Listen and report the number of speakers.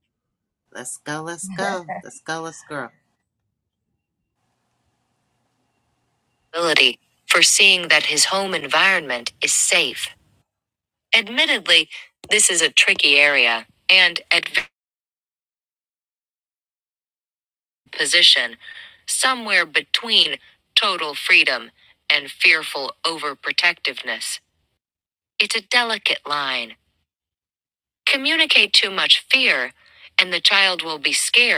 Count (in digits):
2